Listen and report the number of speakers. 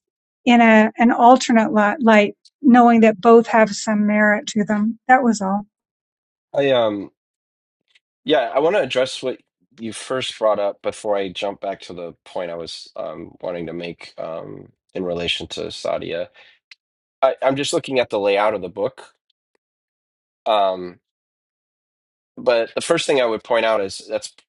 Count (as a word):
two